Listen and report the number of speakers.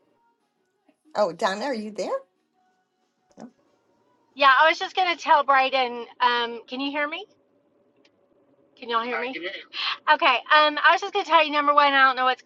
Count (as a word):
two